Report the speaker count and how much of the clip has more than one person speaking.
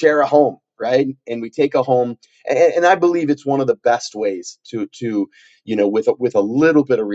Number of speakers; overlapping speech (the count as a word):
one, no overlap